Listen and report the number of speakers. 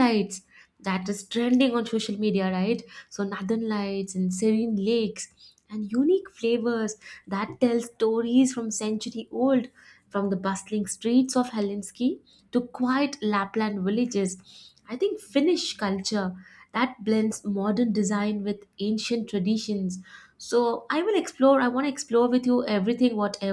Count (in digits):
1